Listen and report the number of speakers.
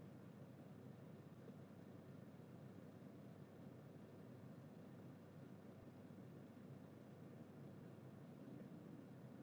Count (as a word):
zero